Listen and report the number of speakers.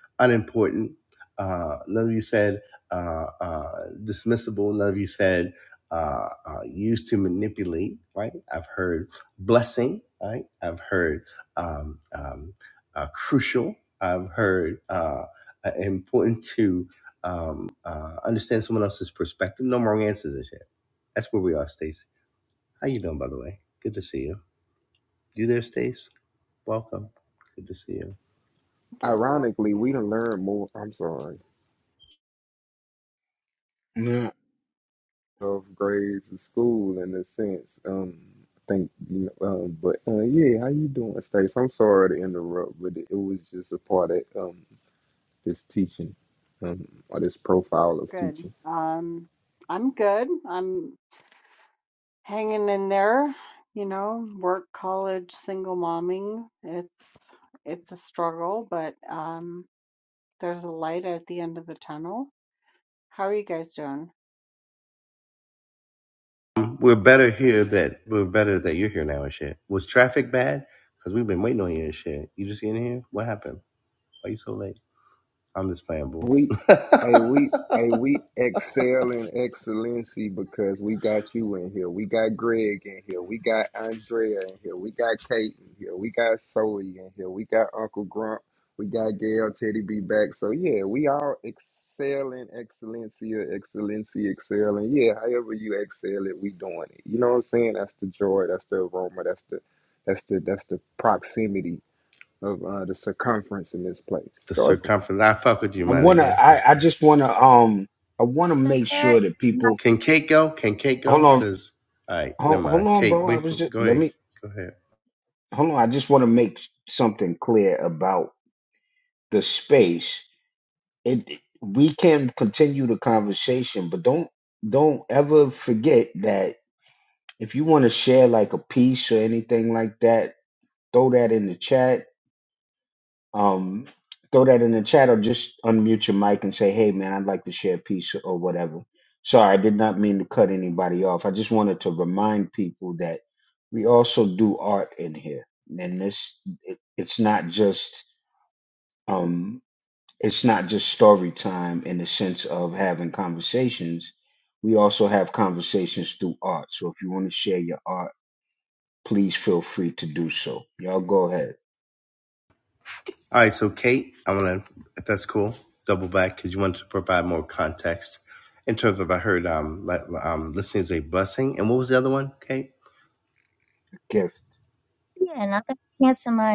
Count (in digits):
5